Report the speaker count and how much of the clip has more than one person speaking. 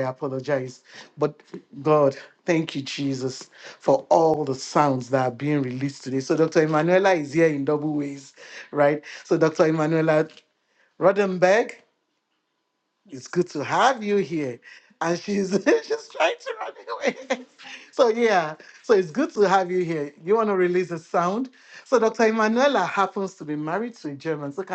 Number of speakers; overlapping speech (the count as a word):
one, no overlap